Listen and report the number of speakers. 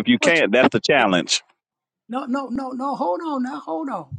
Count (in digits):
2